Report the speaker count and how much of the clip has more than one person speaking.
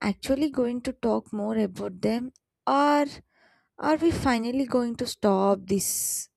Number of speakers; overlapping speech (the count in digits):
1, no overlap